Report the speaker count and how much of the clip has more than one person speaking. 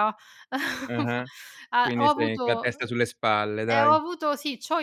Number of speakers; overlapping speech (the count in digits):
2, about 26%